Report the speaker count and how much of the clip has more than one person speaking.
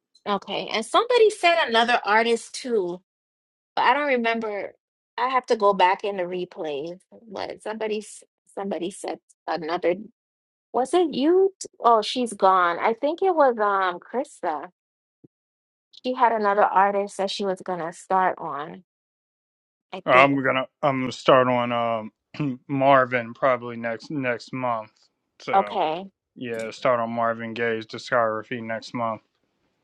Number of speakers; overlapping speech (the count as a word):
two, about 2%